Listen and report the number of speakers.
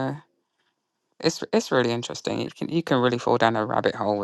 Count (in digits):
1